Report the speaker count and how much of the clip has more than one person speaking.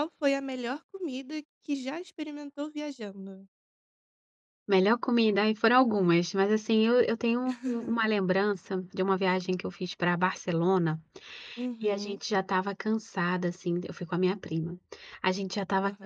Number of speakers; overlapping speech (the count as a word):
two, about 4%